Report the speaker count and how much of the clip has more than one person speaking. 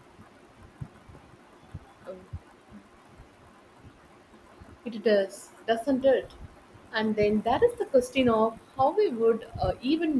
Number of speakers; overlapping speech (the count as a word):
one, no overlap